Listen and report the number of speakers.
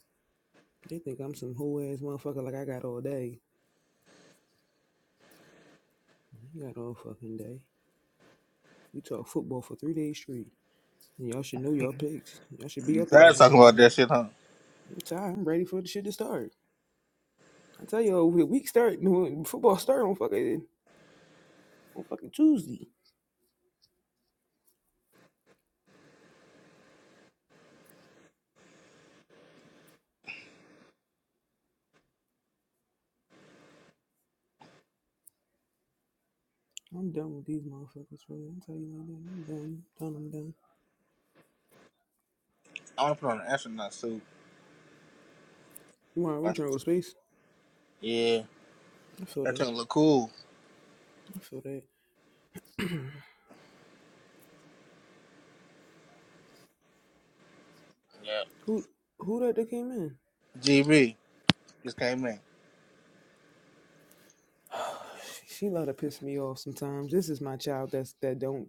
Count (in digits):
2